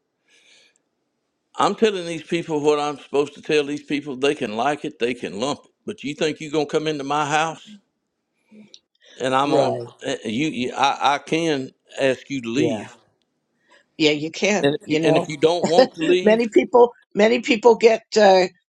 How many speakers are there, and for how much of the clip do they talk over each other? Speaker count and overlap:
2, about 8%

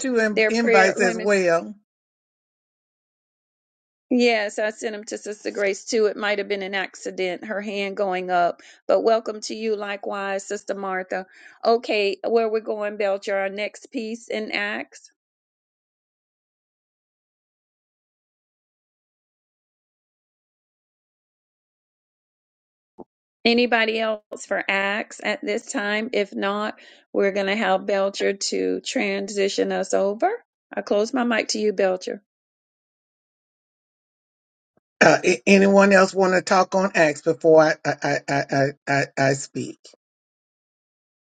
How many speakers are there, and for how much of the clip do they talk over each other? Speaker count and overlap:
2, about 2%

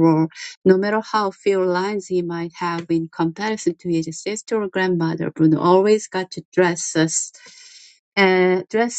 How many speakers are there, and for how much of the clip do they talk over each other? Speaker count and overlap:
1, no overlap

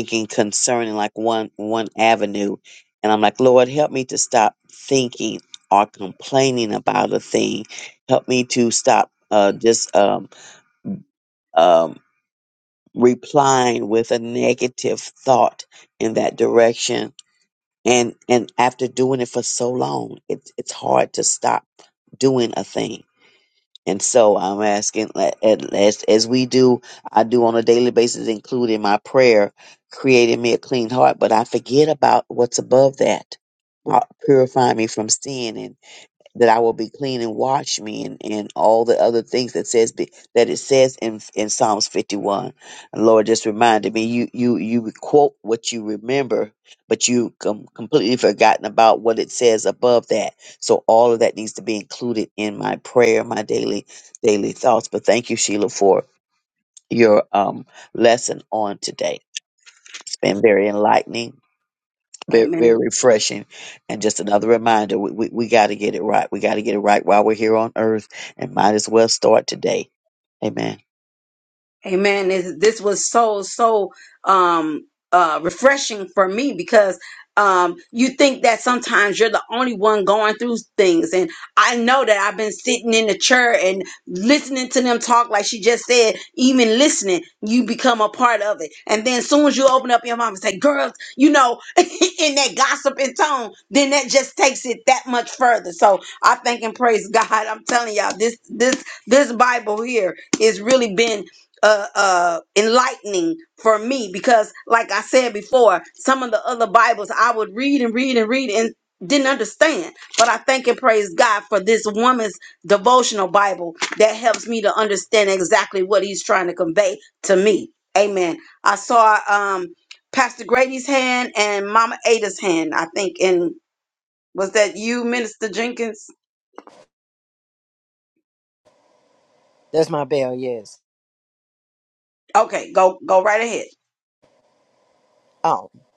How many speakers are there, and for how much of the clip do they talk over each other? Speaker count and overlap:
3, under 1%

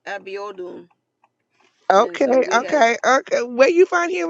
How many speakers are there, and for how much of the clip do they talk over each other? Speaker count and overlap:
2, about 22%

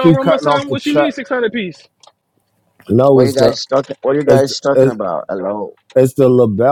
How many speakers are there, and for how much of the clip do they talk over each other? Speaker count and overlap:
3, about 33%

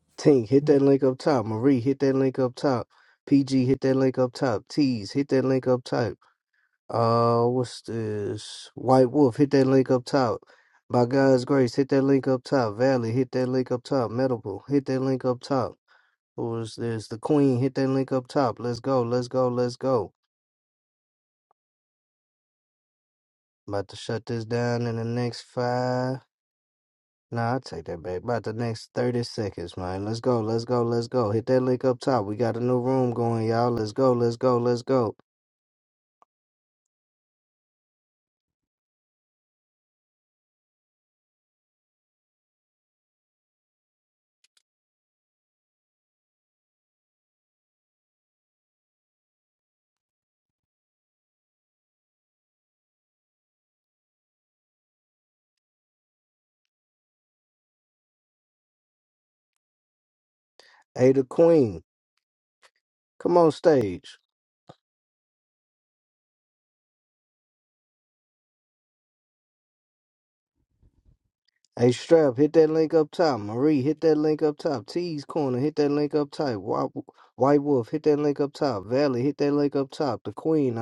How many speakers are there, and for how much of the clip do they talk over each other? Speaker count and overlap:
1, no overlap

